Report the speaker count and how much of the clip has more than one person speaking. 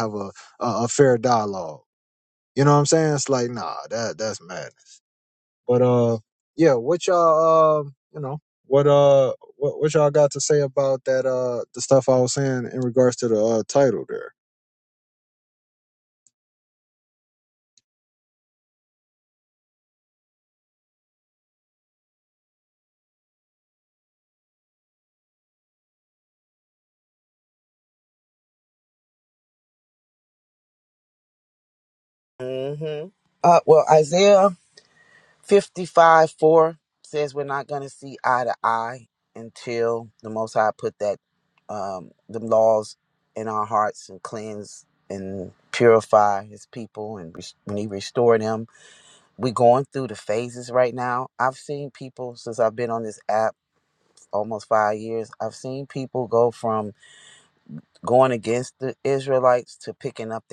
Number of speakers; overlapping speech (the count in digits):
2, no overlap